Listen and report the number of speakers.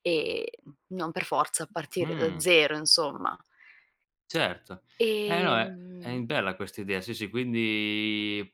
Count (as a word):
two